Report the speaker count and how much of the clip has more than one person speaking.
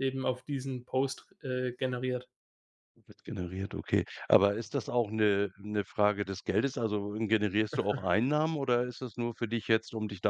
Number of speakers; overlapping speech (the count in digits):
2, no overlap